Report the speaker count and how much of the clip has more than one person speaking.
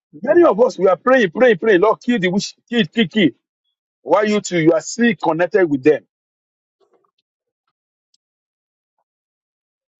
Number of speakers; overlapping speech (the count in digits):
1, no overlap